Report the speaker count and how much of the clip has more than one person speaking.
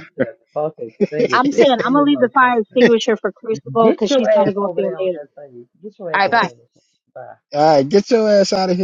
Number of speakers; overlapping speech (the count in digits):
3, about 38%